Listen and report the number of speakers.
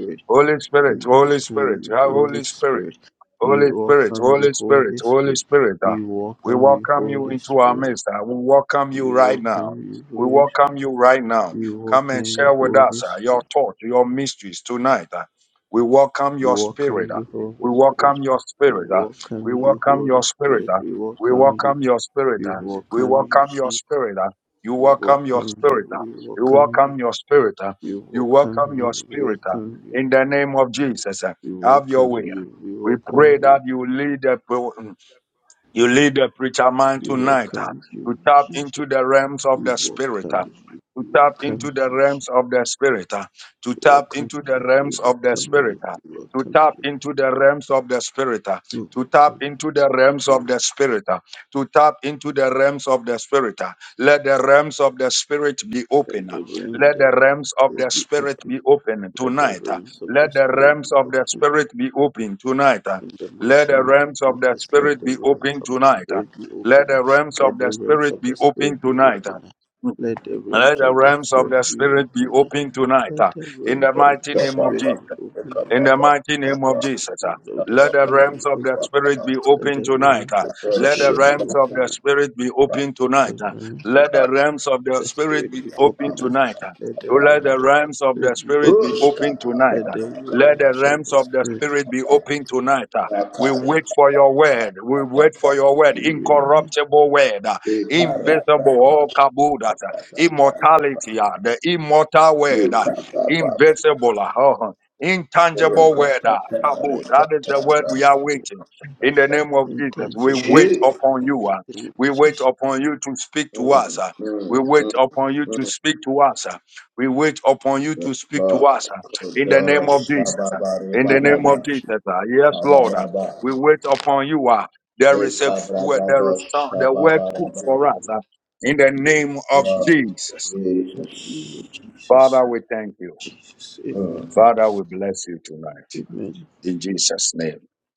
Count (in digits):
3